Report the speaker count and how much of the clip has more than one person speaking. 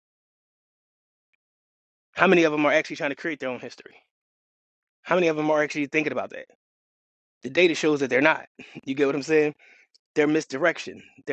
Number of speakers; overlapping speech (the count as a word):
one, no overlap